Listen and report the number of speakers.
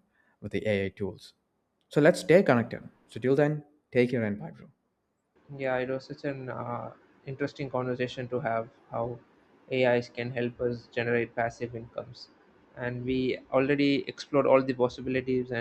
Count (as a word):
two